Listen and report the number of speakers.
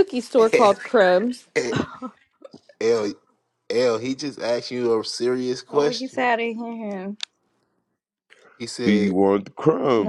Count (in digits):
4